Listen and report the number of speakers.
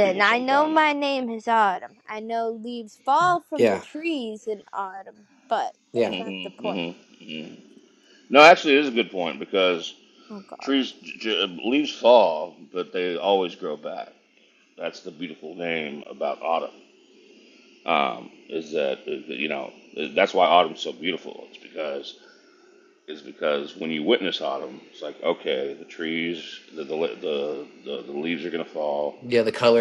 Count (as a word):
three